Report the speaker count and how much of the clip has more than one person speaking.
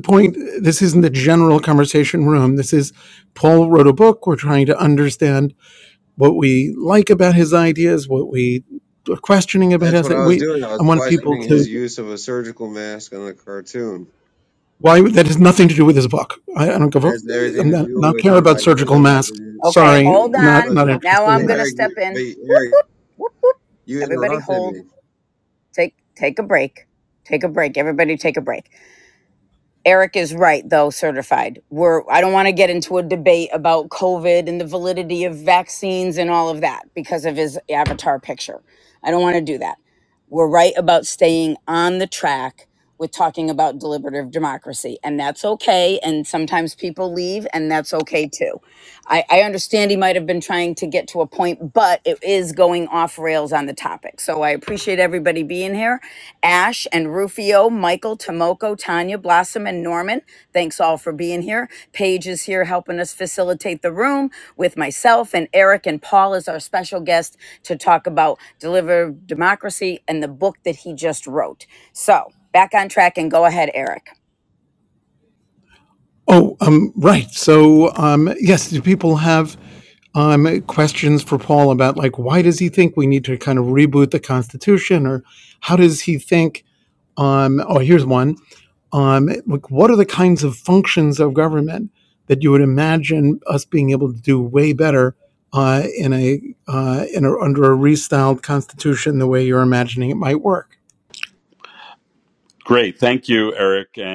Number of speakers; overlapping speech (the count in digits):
4, about 7%